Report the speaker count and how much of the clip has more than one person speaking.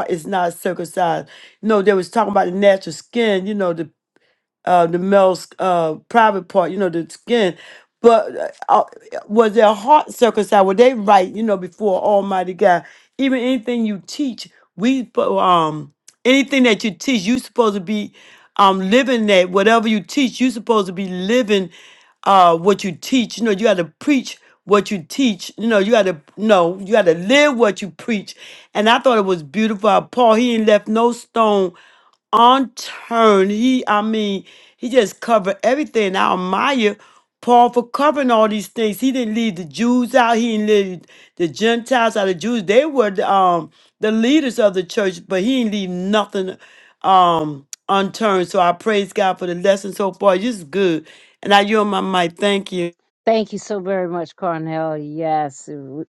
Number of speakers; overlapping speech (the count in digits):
2, no overlap